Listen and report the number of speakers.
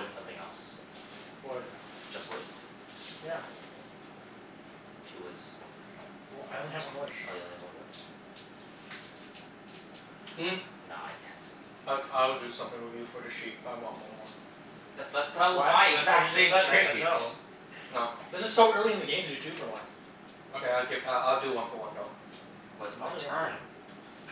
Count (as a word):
three